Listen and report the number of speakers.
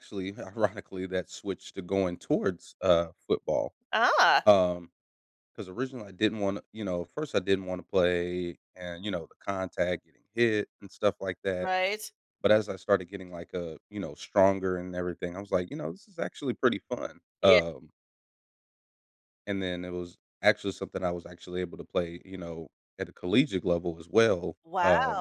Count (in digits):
2